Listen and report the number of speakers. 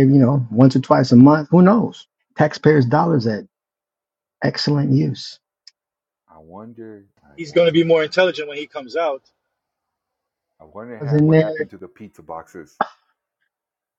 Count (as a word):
three